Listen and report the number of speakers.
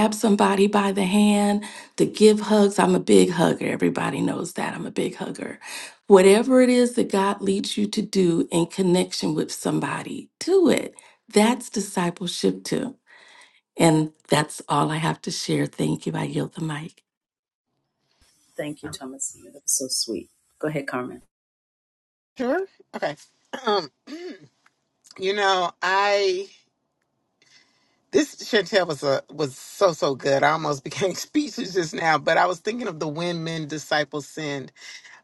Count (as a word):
three